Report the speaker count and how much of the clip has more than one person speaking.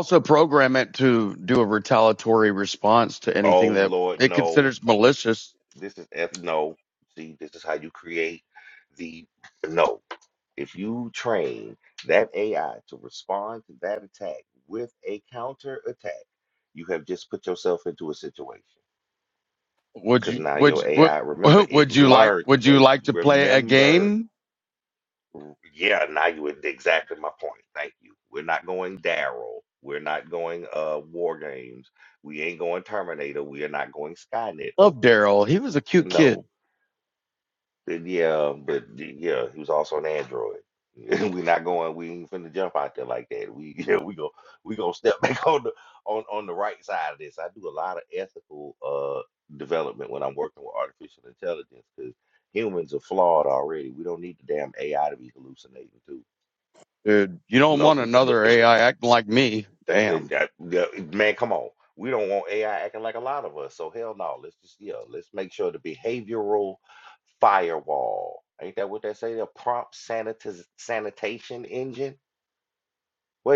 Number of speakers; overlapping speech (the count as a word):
two, about 9%